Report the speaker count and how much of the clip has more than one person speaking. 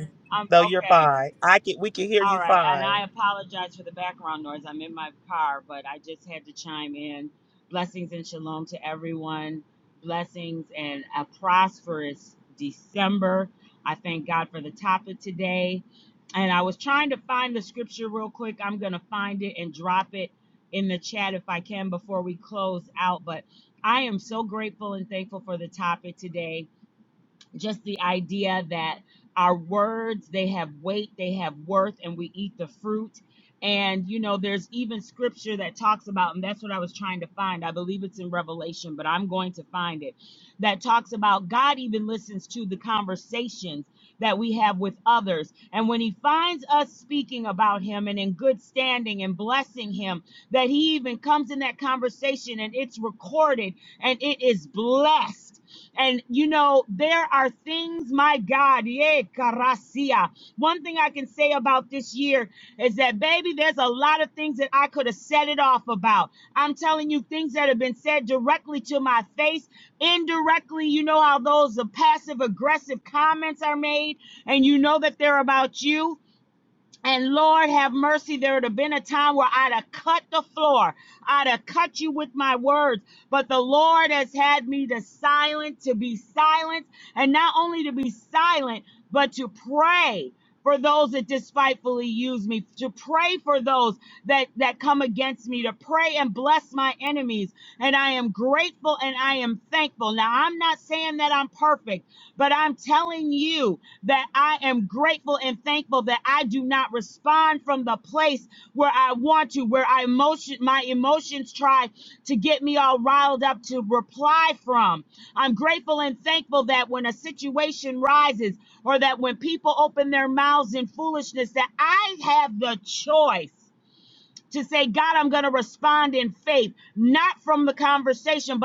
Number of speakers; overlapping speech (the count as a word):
two, about 1%